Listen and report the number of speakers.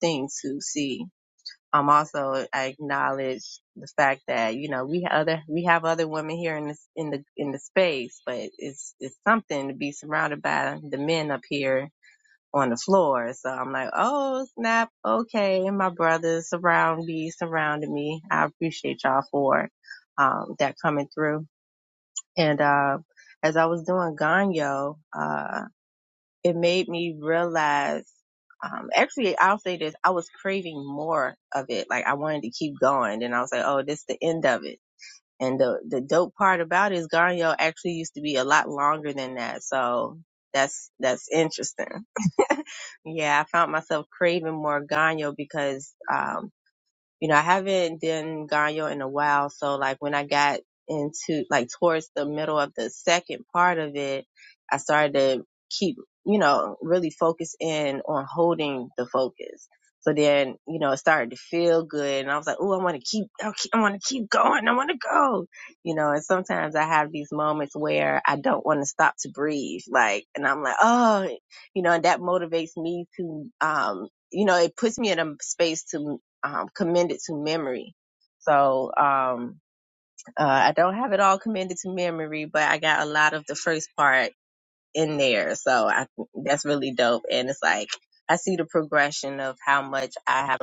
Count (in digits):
1